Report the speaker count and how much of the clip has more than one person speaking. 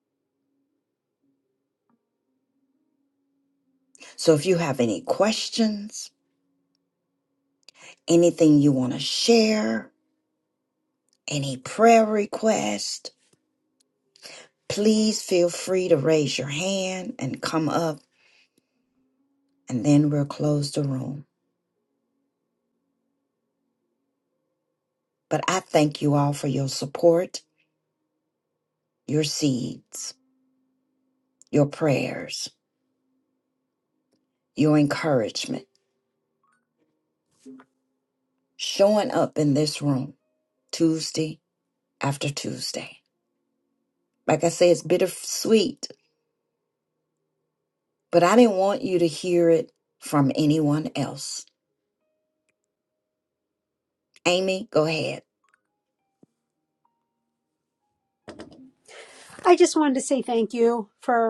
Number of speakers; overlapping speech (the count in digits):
2, no overlap